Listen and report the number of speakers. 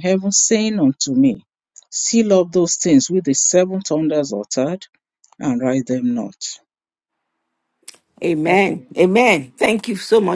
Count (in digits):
2